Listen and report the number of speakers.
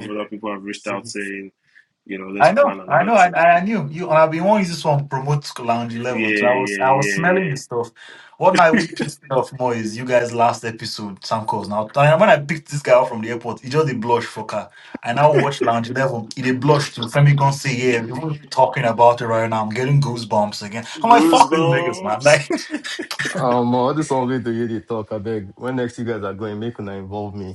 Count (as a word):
three